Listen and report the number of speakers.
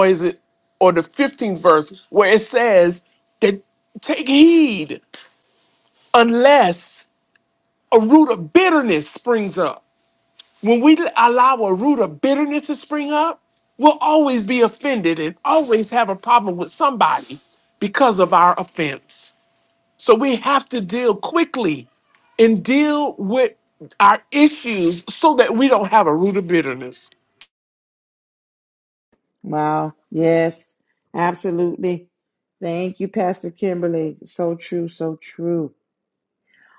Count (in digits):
2